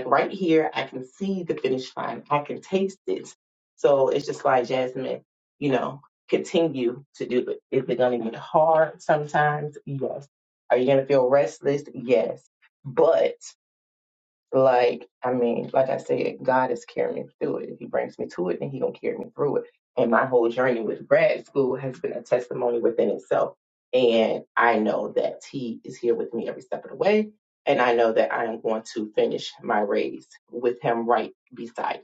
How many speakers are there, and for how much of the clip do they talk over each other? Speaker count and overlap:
one, no overlap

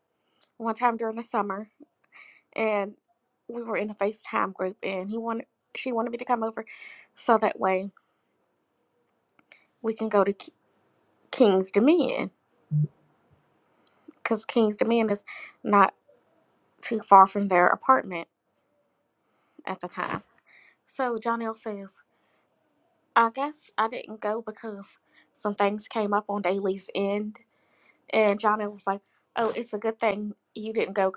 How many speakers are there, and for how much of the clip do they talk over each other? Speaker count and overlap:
one, no overlap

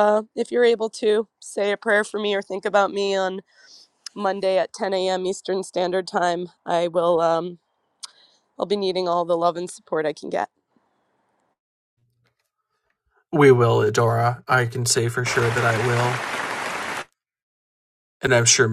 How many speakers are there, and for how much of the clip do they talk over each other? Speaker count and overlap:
two, no overlap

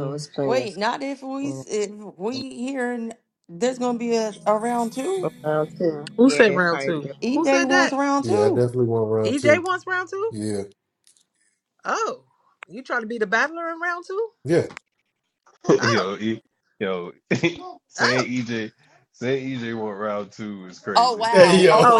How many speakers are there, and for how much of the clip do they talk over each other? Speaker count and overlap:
five, about 21%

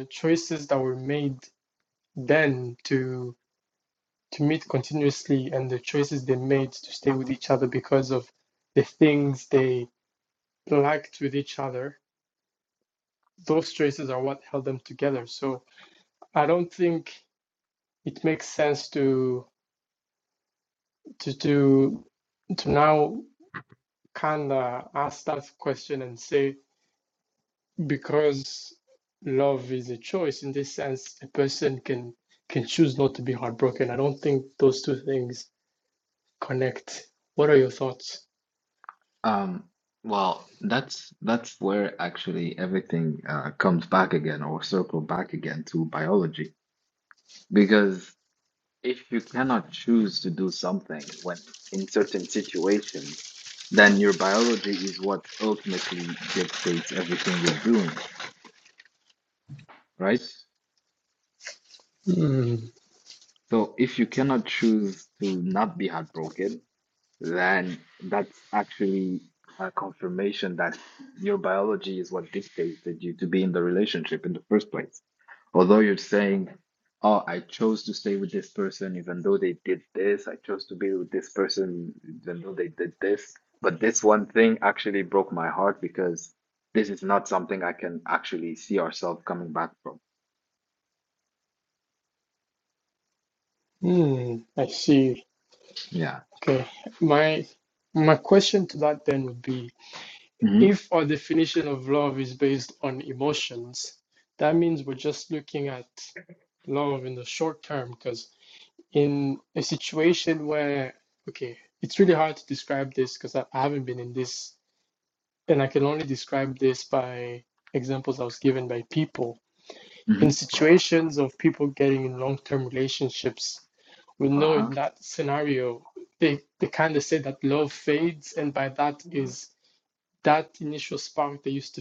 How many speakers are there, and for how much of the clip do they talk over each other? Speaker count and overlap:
two, under 1%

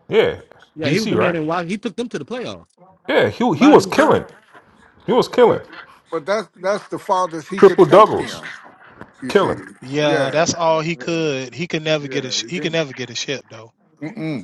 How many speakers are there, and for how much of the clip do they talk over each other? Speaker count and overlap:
four, about 30%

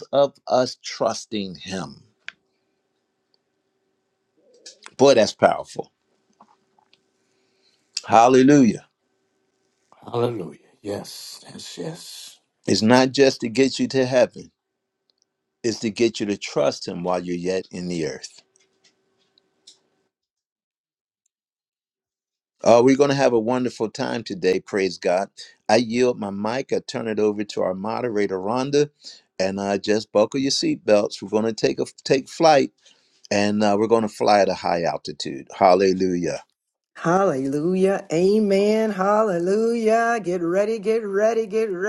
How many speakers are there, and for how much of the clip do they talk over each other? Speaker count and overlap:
three, no overlap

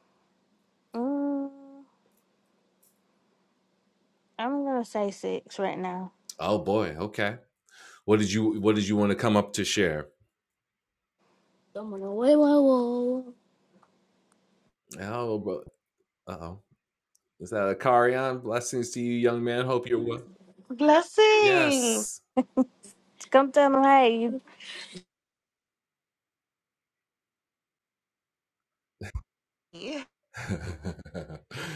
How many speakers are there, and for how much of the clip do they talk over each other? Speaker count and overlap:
three, about 1%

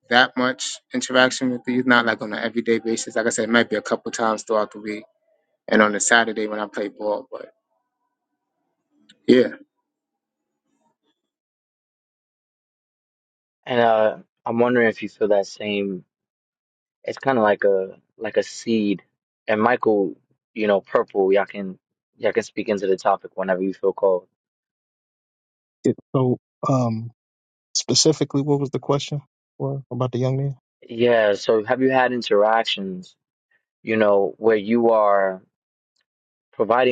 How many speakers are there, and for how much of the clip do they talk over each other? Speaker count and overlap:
three, no overlap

